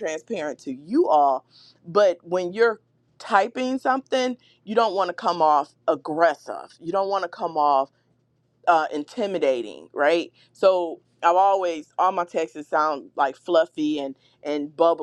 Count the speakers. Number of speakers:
one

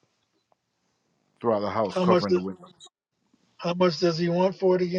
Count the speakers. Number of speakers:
two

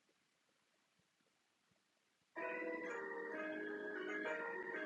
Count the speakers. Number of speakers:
zero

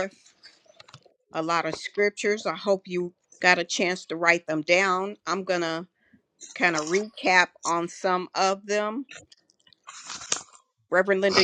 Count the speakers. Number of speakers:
one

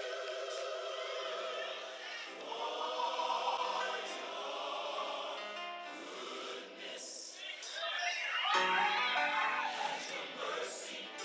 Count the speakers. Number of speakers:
zero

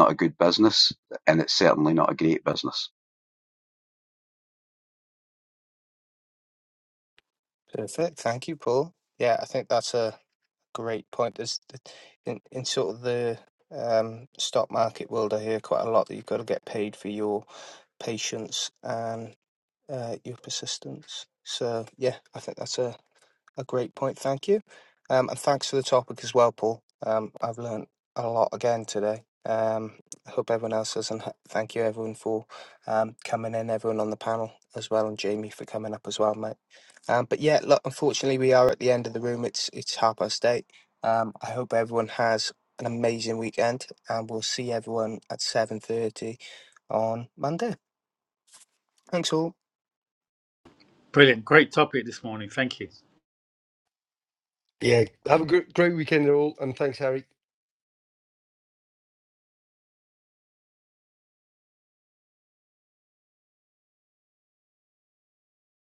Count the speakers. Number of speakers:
four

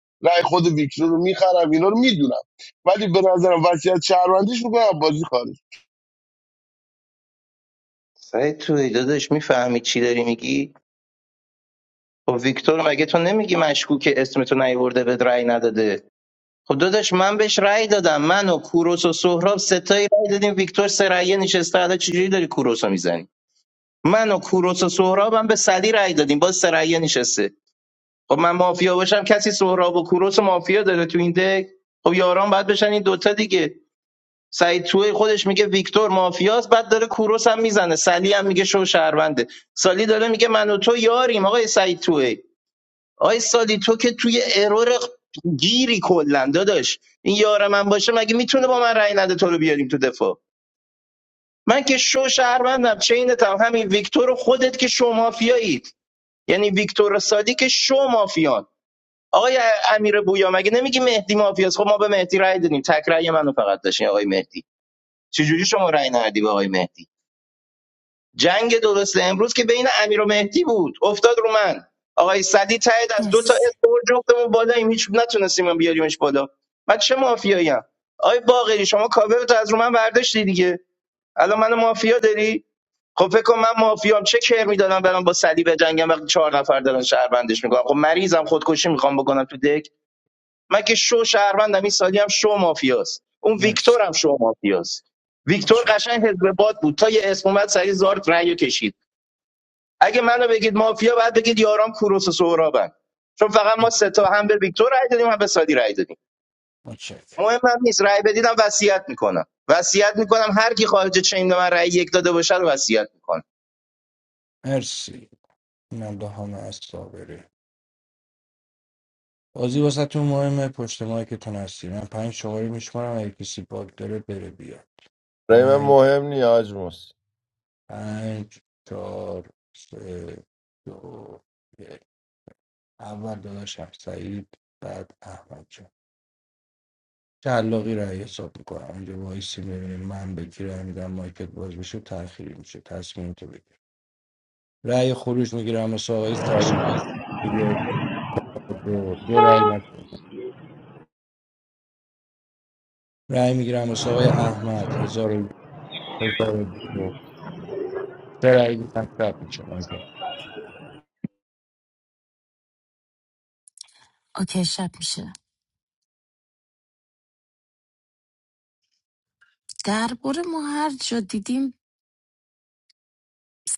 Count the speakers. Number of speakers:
five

